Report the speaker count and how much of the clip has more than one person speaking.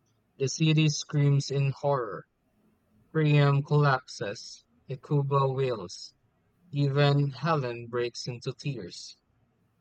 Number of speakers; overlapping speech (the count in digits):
1, no overlap